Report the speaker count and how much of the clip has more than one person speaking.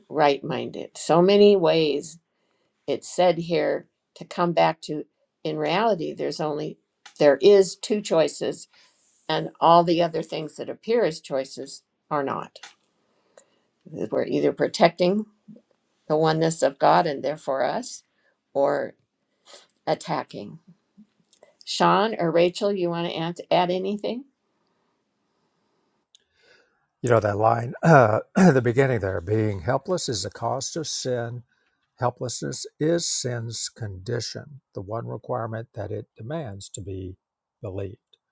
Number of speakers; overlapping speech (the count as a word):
two, no overlap